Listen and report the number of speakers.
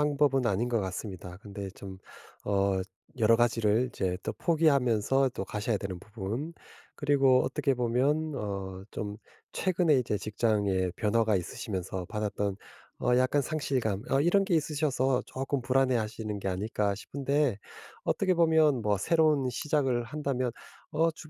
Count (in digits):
1